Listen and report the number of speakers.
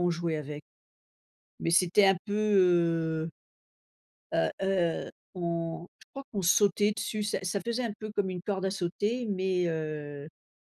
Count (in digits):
1